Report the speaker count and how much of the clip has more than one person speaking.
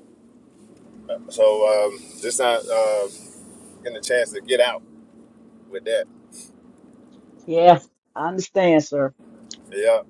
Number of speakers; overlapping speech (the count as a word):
two, no overlap